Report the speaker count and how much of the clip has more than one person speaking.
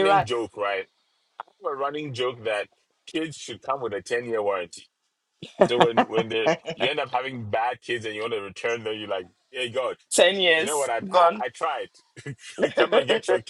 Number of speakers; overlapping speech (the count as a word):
two, about 6%